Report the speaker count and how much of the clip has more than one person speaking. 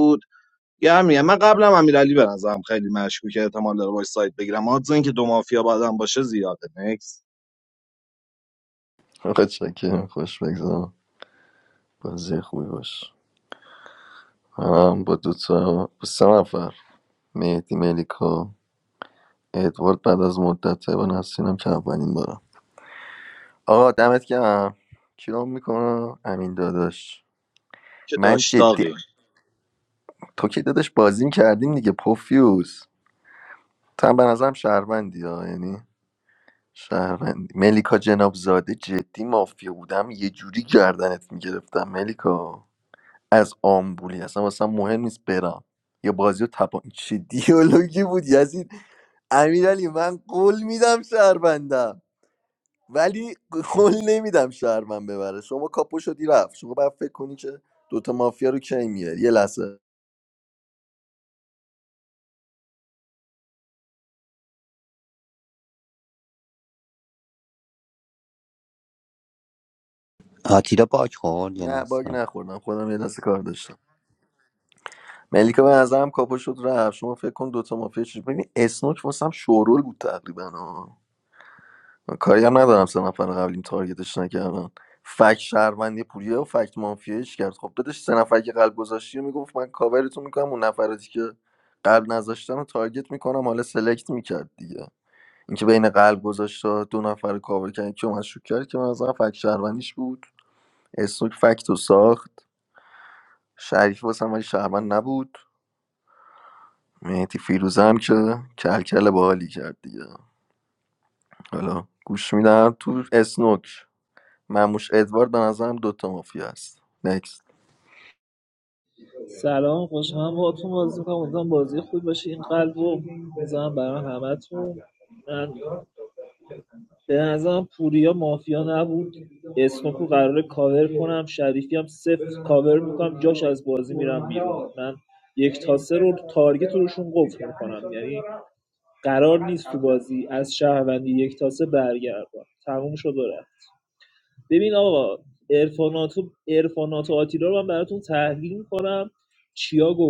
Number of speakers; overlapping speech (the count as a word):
four, about 1%